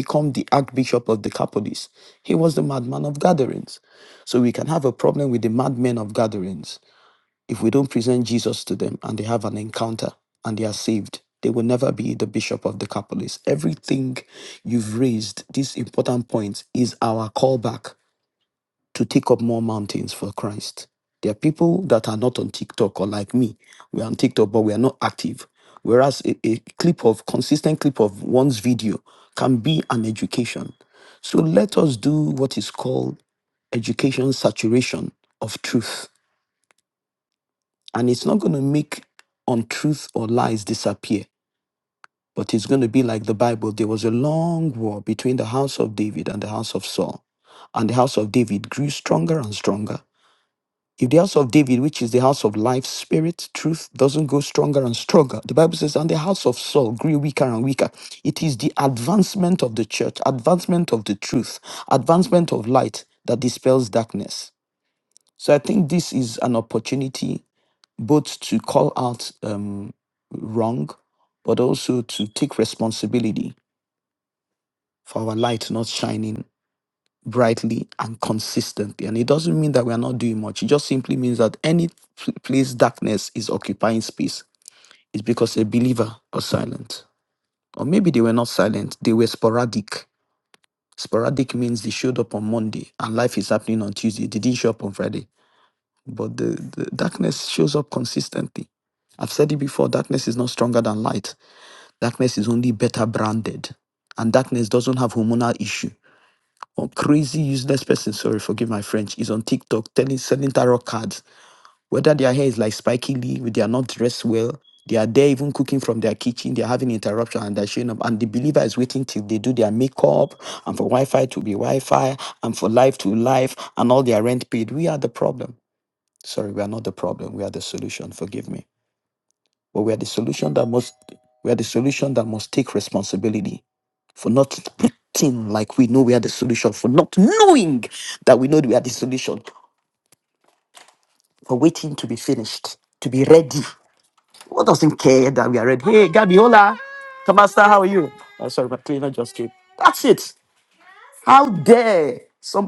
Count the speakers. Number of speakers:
1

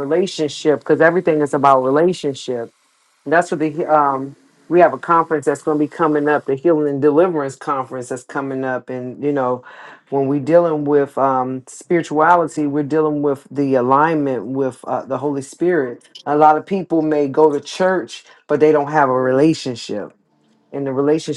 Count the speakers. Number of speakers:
1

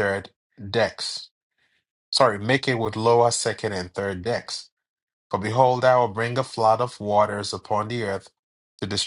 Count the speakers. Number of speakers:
1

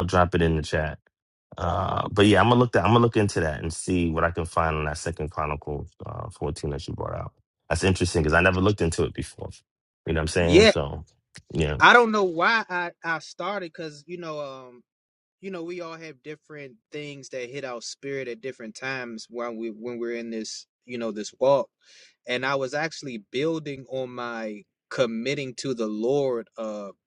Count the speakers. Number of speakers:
2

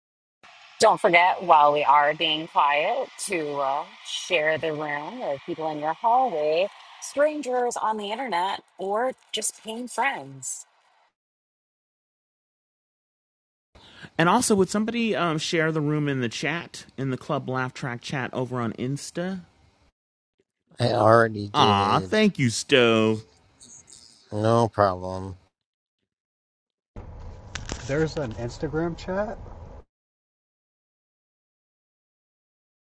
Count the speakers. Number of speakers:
4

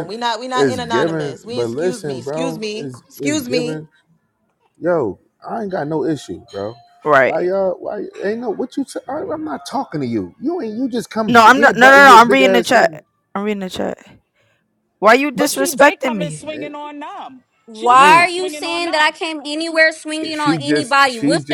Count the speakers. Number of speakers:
5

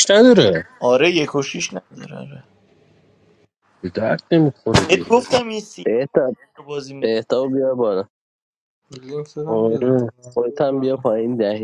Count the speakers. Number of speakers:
4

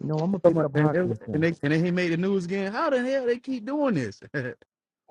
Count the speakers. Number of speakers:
2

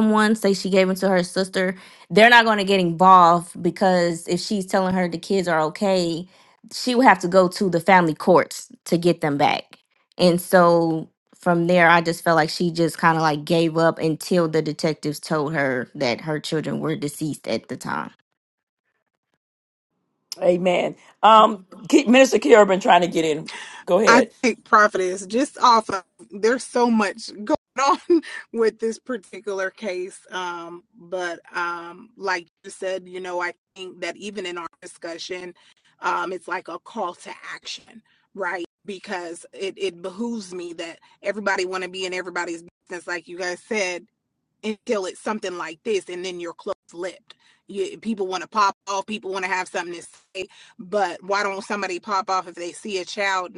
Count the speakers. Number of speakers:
3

